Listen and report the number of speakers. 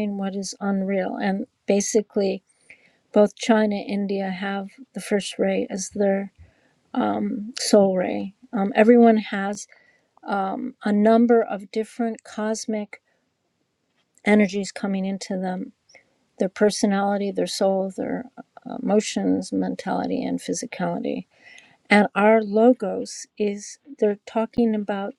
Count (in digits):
1